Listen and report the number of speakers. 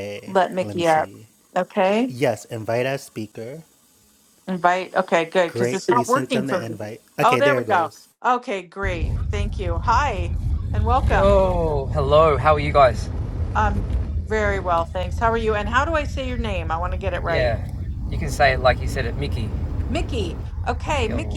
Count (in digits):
3